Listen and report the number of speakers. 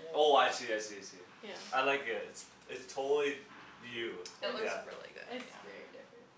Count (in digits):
3